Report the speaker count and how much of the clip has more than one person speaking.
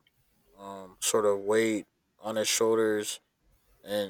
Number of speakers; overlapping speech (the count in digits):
1, no overlap